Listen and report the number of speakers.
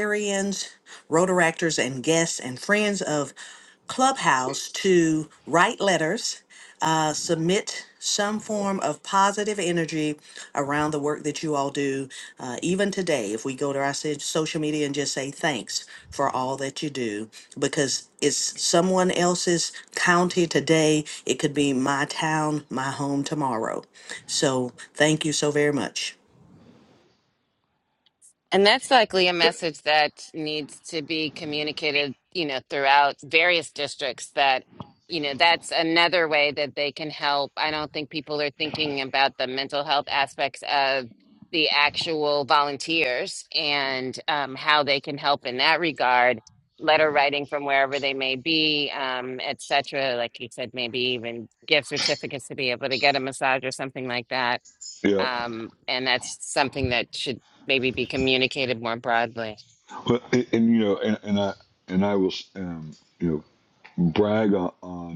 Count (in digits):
3